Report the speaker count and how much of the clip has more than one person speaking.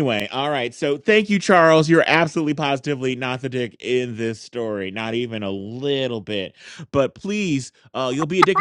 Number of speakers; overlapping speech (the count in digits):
1, no overlap